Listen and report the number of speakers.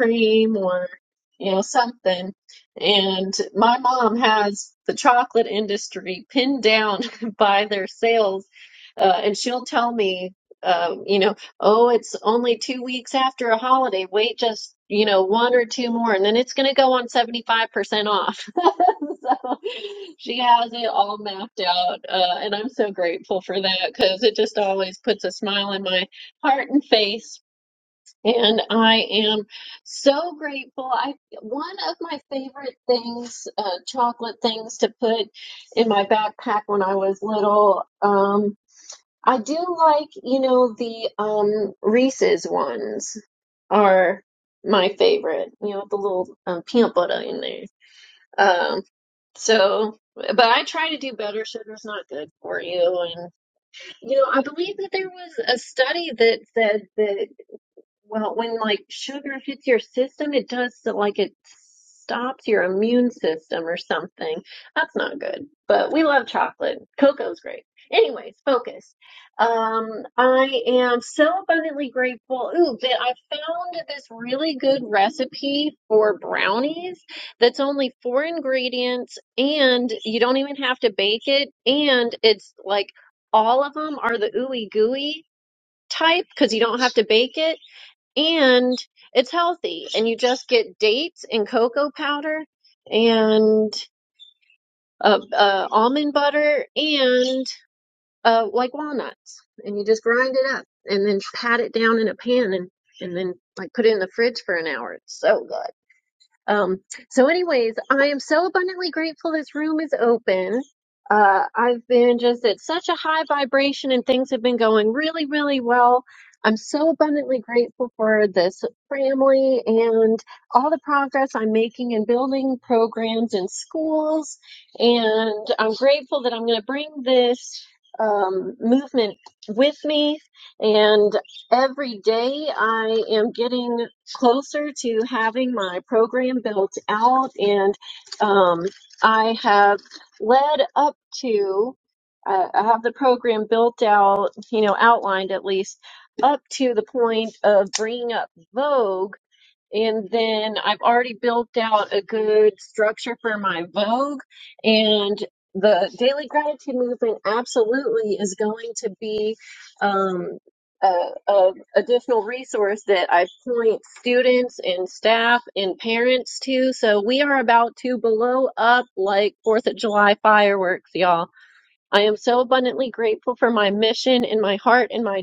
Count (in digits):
1